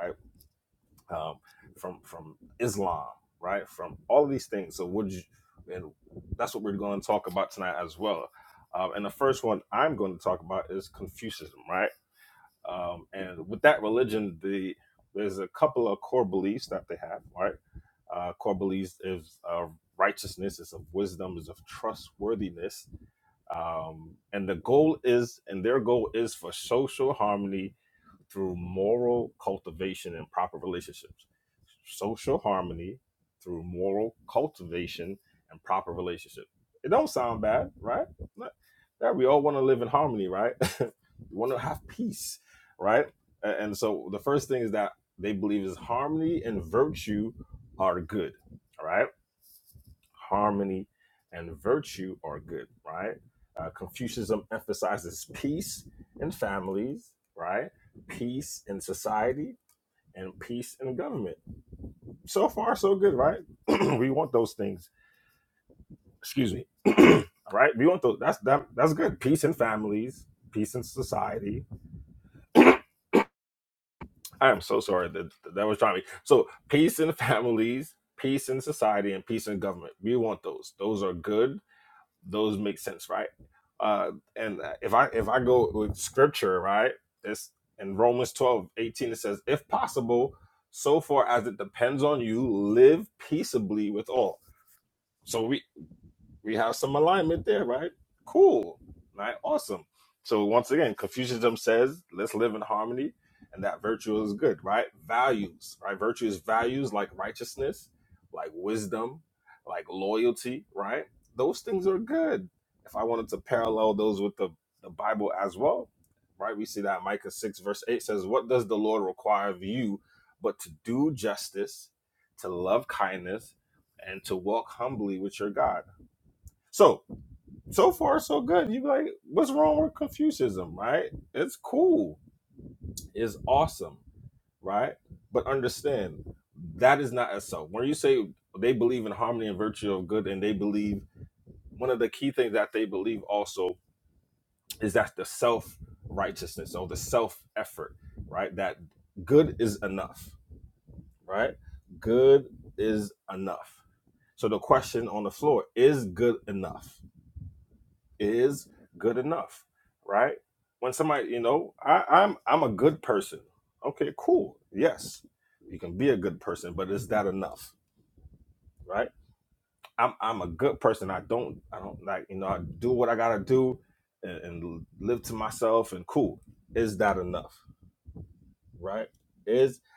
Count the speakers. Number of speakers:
1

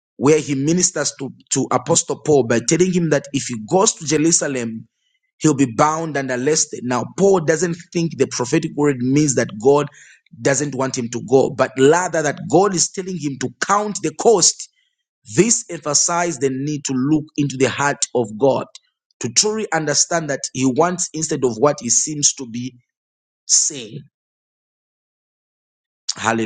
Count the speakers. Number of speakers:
1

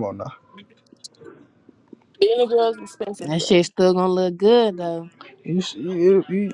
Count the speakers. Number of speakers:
3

